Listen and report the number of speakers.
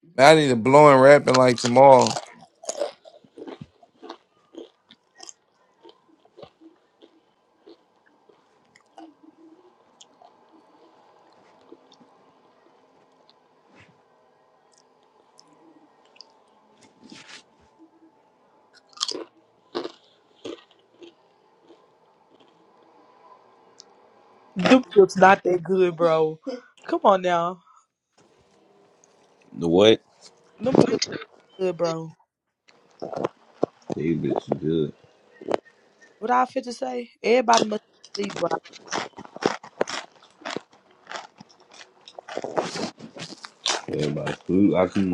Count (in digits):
3